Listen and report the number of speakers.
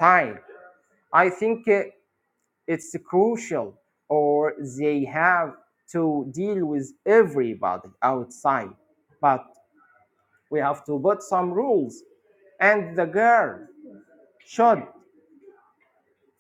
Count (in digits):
1